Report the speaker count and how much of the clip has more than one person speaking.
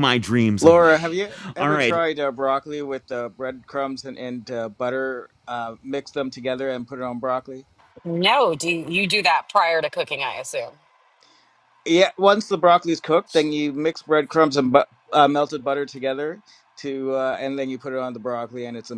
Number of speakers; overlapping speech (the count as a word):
three, about 5%